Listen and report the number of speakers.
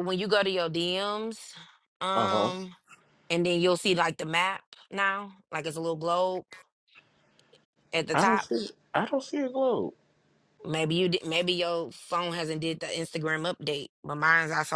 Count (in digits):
2